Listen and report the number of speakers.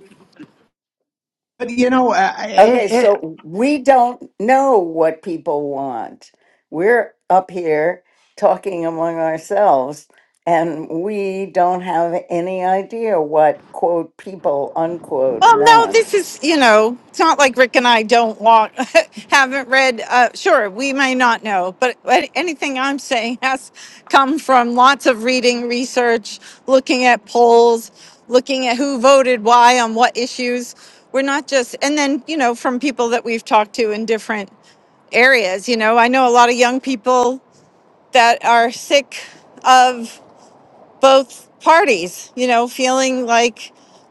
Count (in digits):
3